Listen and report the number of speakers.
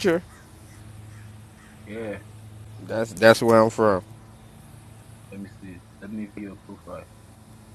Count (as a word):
two